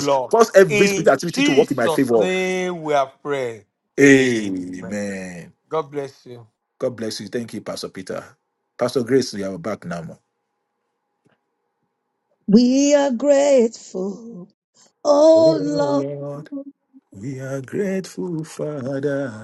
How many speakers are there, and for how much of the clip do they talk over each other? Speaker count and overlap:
3, about 18%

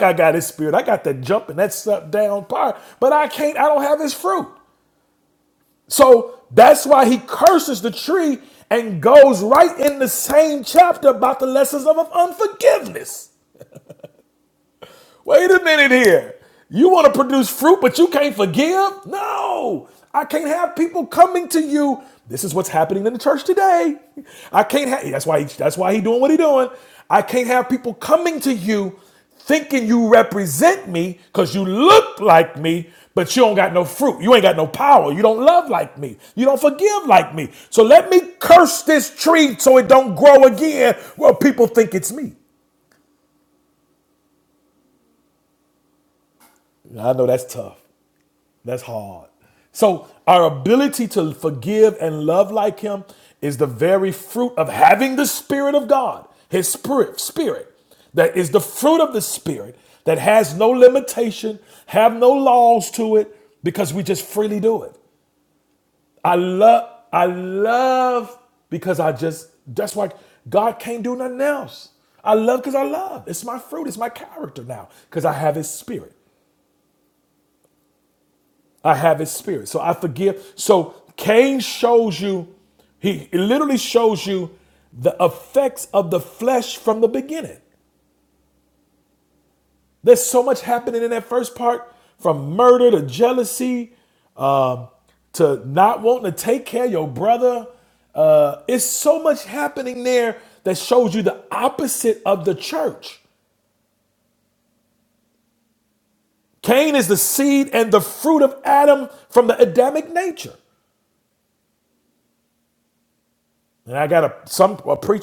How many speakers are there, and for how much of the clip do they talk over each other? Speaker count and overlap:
1, no overlap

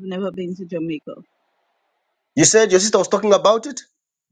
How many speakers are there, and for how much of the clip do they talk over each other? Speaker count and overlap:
2, no overlap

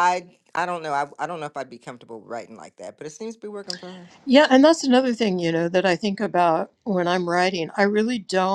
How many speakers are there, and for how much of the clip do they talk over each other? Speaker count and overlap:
2, no overlap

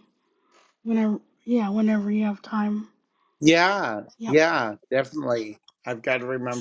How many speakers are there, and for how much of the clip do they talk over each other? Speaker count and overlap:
2, about 2%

